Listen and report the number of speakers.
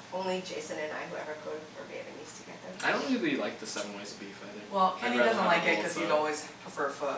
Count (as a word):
three